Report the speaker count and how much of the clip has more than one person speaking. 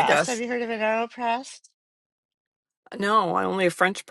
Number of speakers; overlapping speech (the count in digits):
2, about 6%